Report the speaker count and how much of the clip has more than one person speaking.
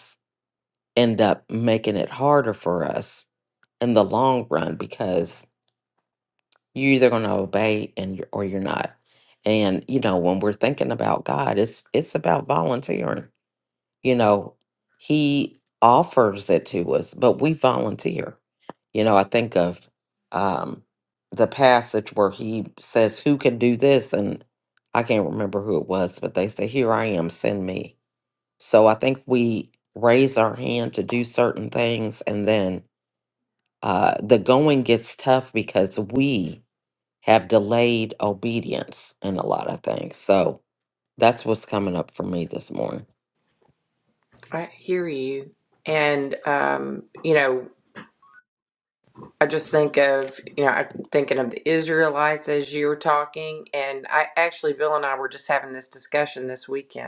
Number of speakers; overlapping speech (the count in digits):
2, no overlap